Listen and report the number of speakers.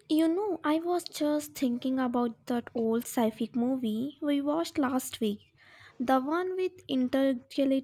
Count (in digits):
1